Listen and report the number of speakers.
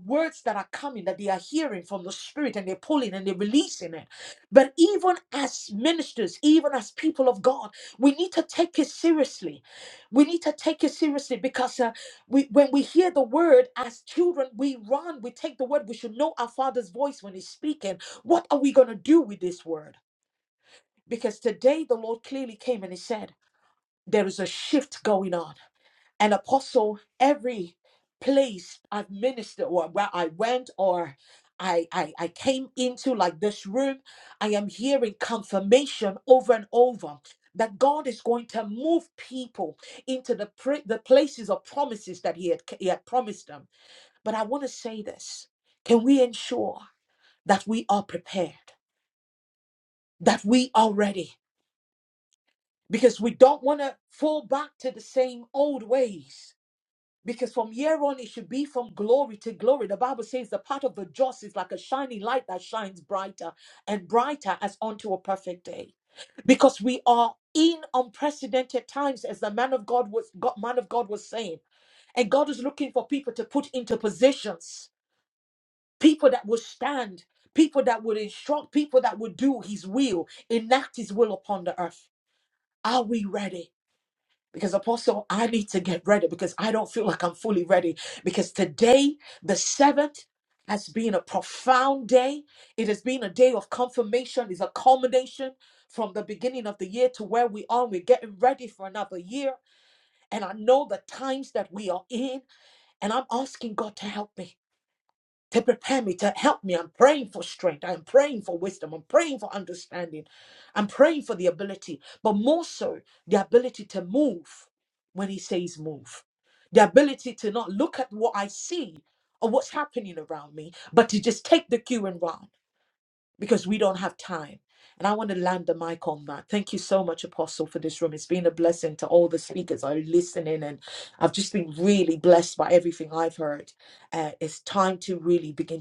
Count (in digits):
1